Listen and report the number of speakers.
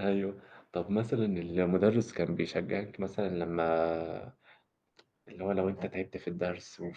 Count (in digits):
1